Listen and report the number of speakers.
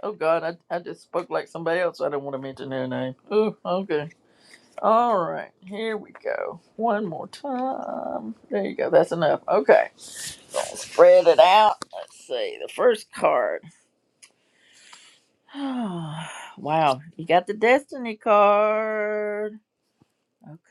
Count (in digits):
1